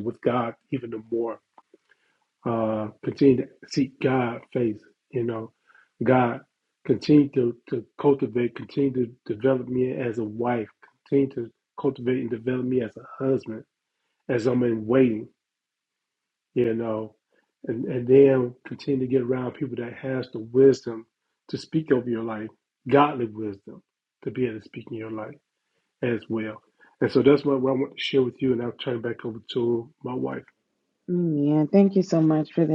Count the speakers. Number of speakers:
2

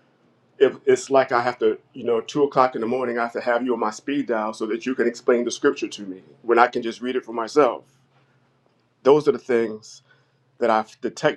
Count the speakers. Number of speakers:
1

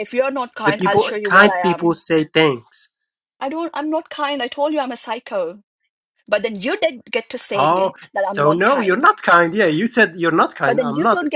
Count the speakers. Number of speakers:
2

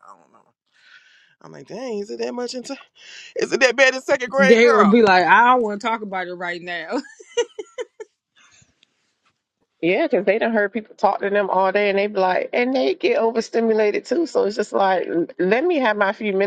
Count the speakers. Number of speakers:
3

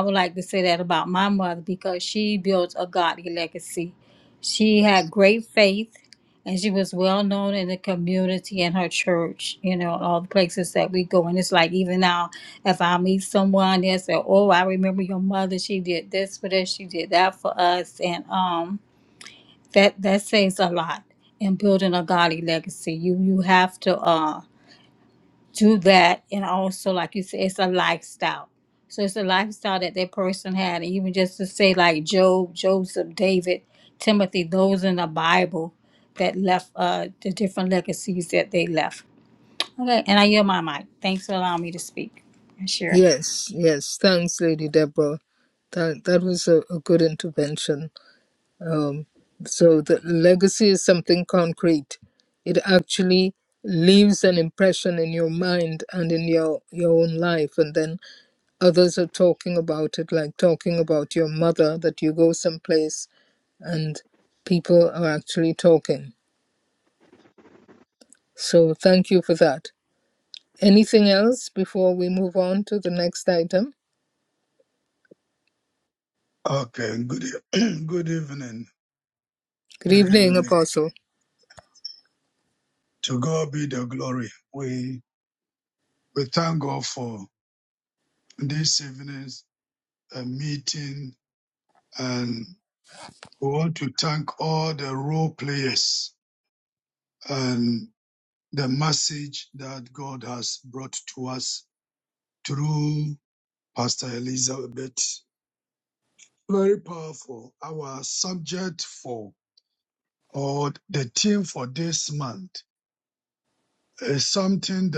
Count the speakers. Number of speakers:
3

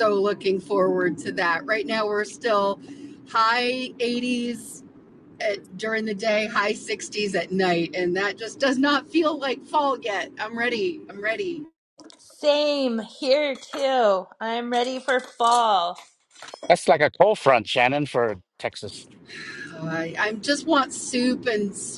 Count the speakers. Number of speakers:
3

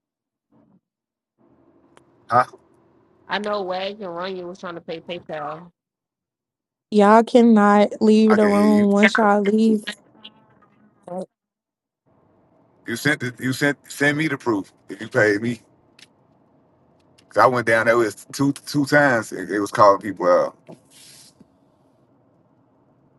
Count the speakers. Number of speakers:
3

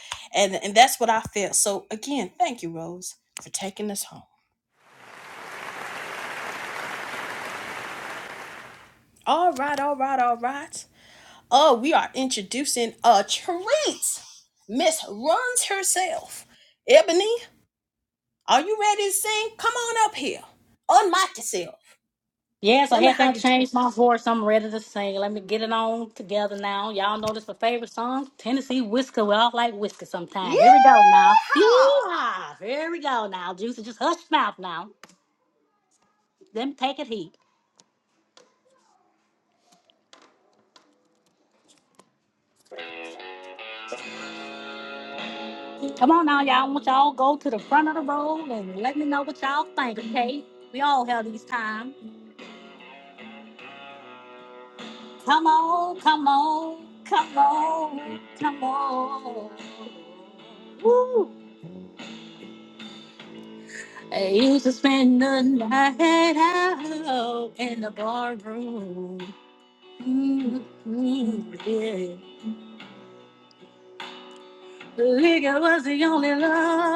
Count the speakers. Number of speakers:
2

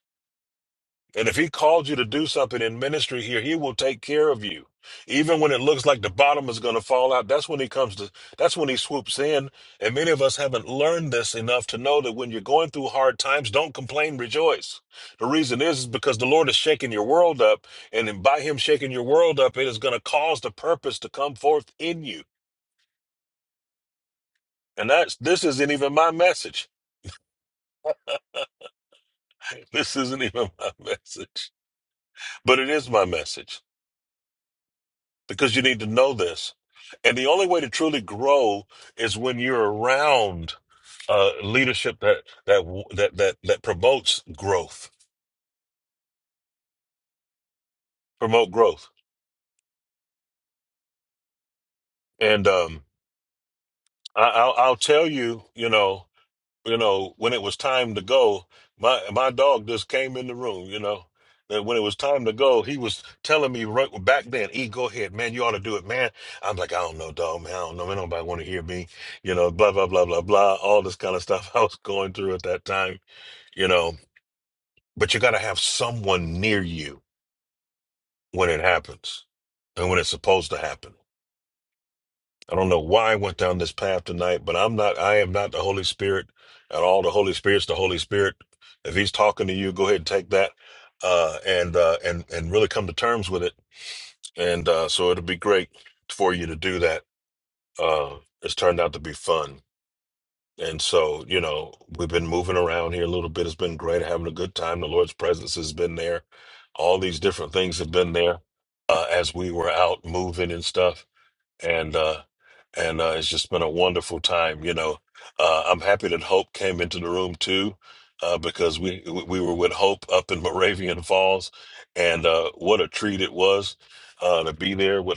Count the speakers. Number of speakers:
1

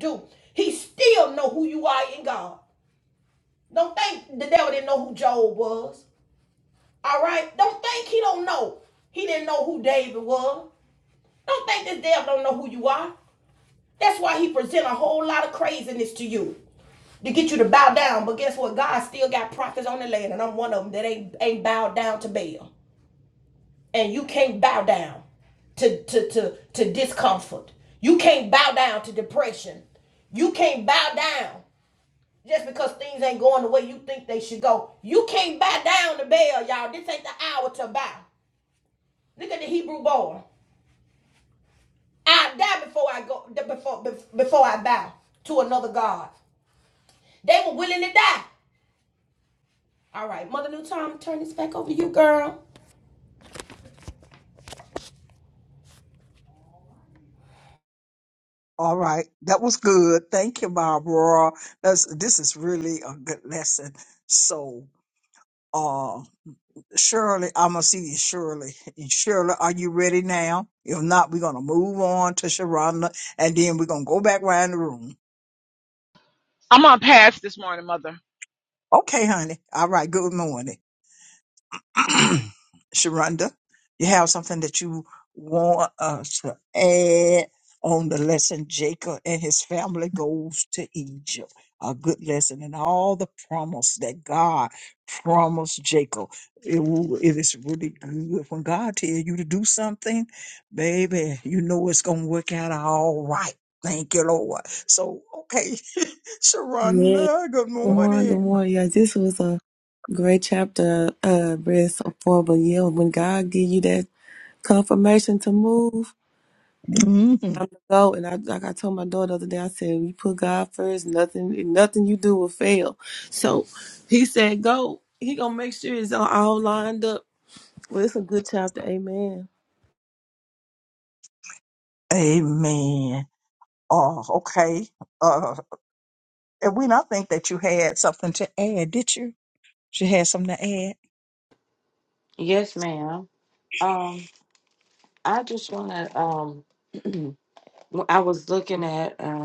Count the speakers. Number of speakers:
5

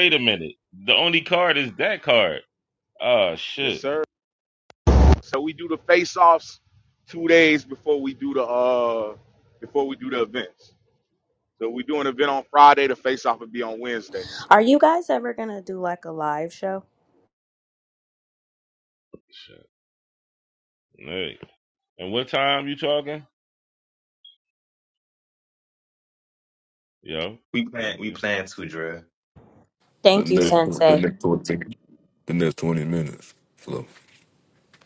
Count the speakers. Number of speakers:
5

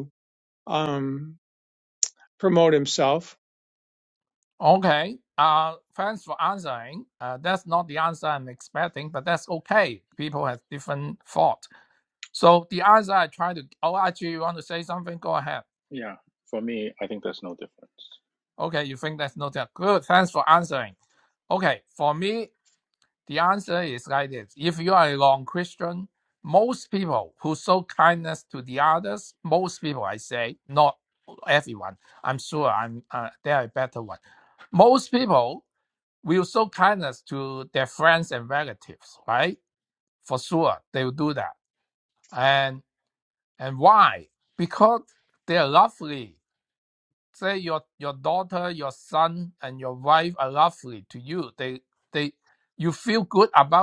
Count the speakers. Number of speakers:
3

